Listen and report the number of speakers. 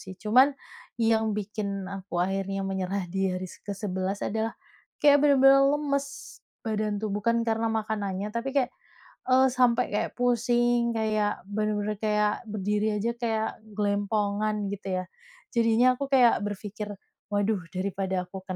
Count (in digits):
1